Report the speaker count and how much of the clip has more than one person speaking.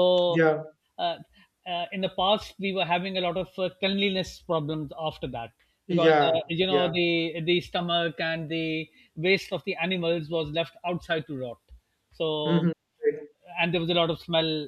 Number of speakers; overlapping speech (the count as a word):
two, about 10%